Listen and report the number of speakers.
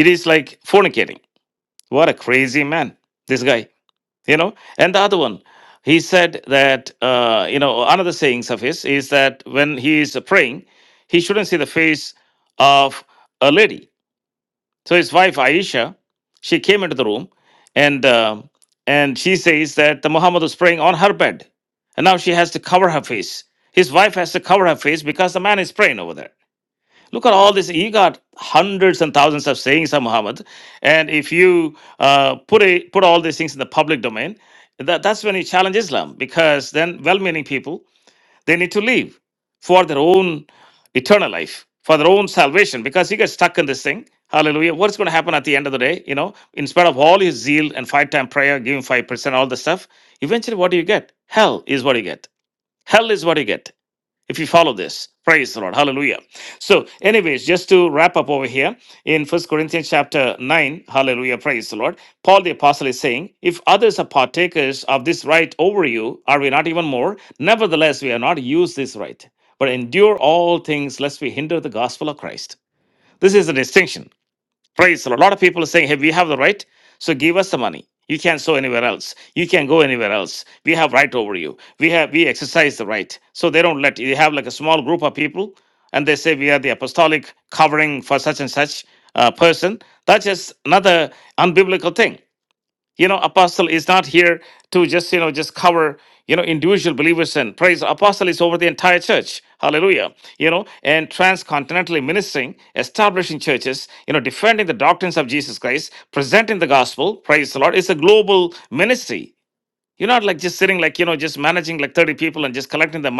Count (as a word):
one